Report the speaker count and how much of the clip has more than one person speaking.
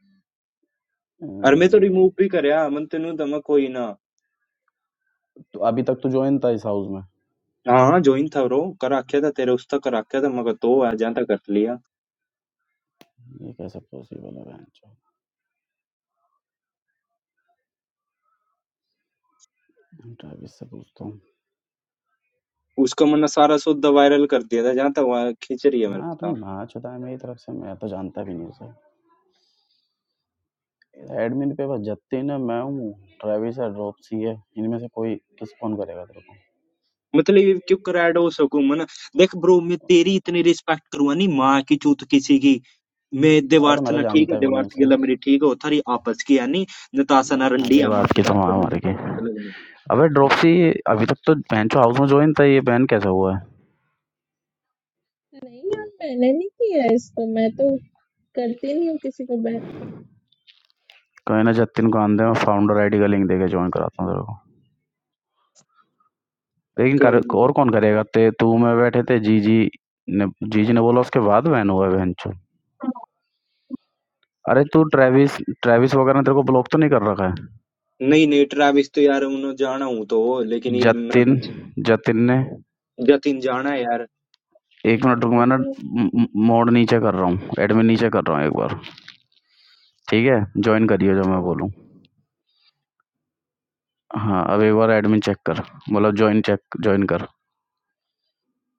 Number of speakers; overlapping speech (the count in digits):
3, about 6%